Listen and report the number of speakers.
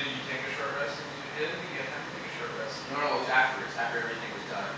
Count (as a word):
two